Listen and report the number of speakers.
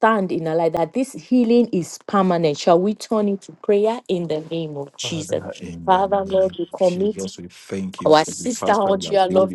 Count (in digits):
2